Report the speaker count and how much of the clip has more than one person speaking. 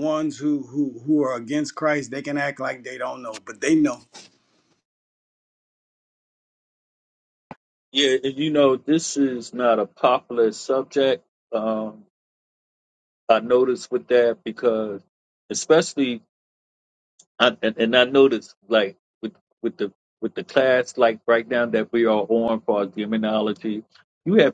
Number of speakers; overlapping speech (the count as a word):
two, no overlap